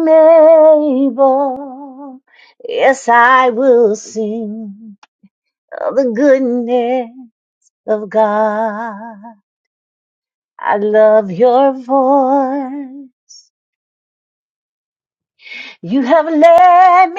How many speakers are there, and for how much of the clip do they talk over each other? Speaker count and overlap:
1, no overlap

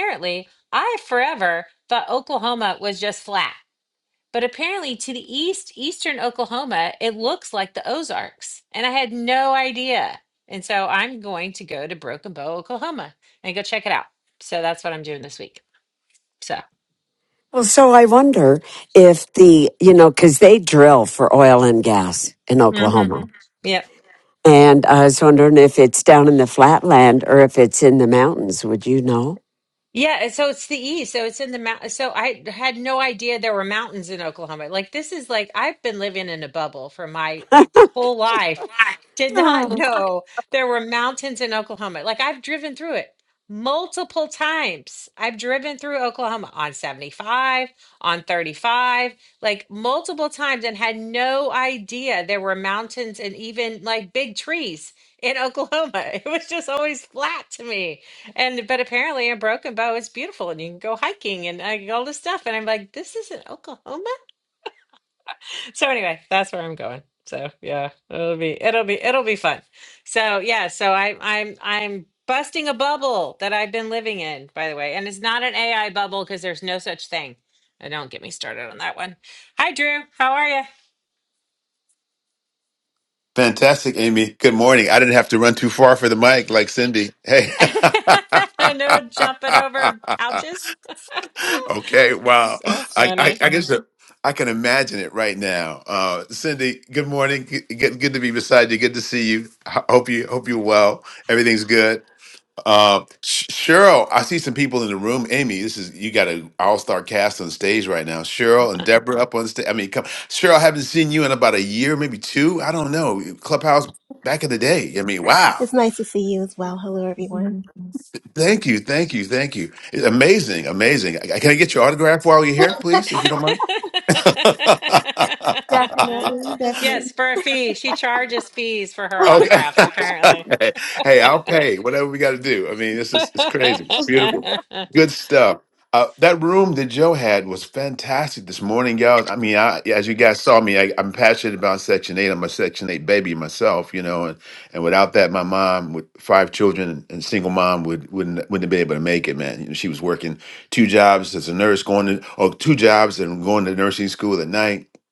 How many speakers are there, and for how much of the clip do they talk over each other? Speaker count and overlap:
4, about 1%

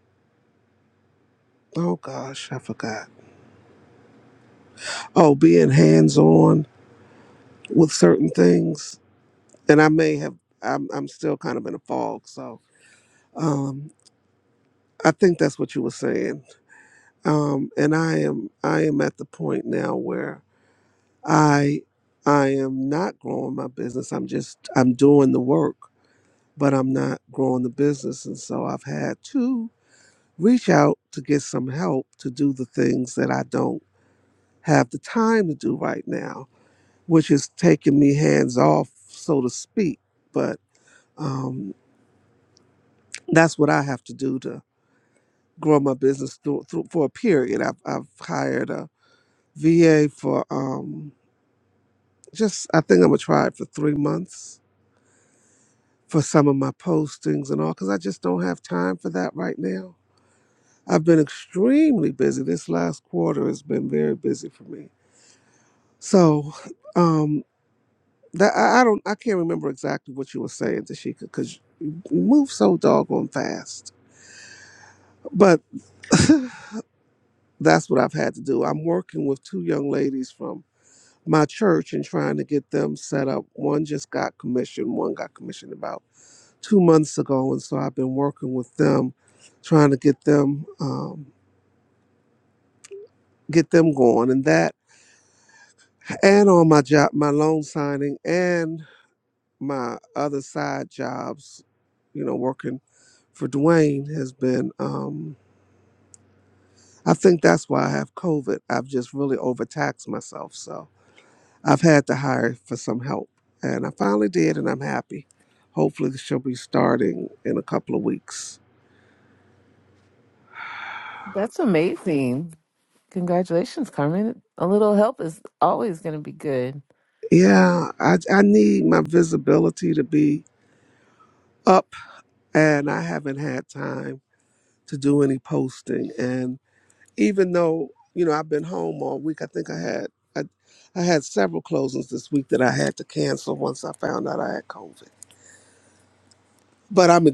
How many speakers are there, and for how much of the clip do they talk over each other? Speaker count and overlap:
2, no overlap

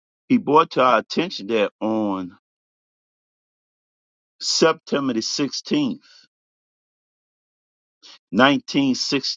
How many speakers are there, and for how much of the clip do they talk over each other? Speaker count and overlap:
1, no overlap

